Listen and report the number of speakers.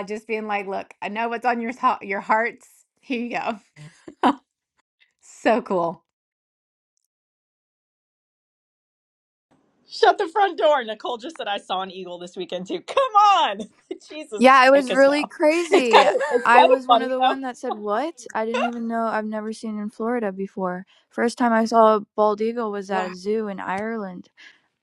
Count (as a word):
three